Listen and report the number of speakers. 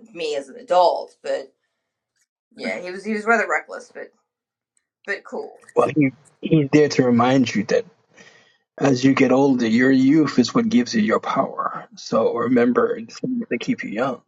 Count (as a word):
two